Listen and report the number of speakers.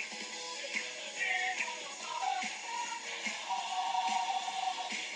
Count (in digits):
0